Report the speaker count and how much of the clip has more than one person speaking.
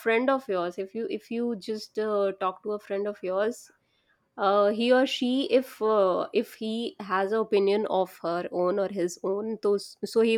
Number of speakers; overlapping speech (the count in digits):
1, no overlap